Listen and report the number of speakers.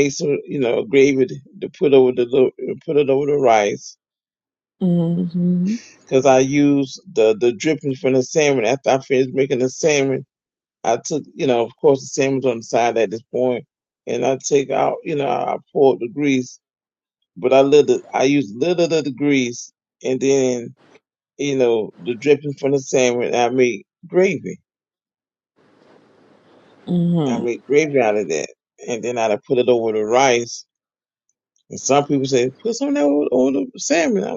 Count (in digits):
2